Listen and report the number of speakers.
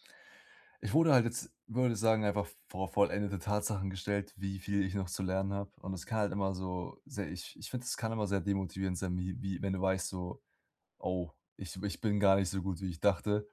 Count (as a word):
one